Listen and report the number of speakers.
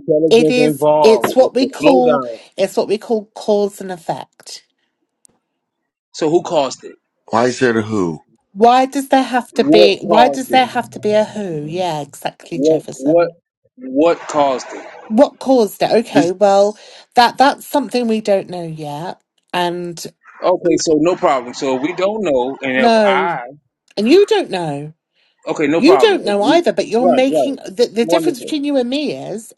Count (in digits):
3